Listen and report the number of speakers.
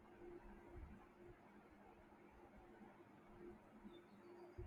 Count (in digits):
0